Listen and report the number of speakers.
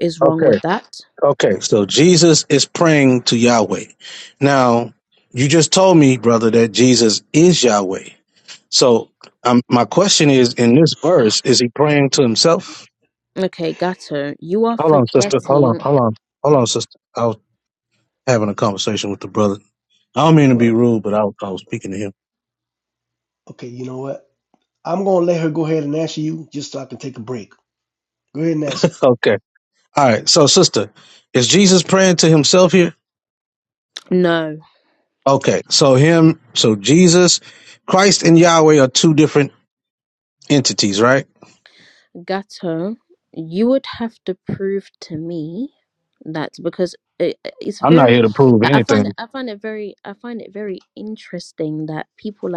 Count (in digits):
3